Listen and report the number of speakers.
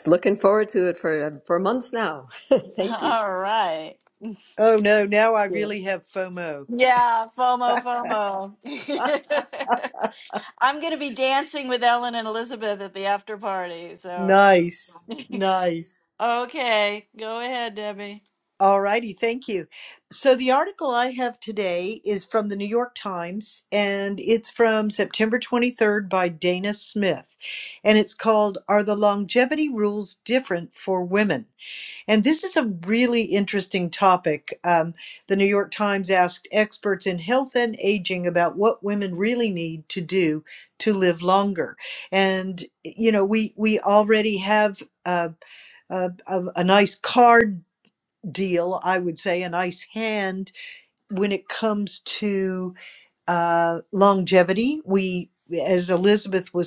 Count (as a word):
three